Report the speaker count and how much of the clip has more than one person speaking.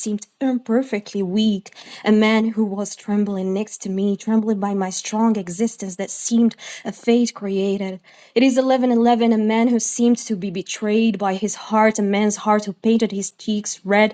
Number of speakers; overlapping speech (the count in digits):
1, no overlap